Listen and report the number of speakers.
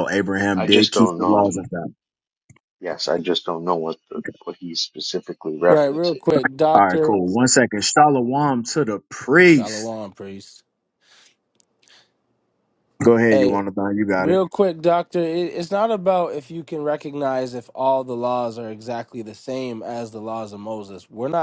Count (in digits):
3